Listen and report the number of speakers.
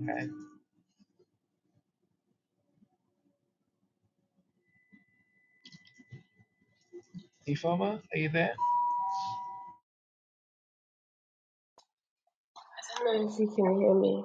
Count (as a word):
two